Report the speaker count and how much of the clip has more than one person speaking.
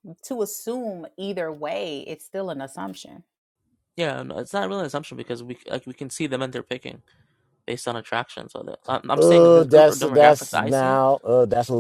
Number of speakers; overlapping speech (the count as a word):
three, about 15%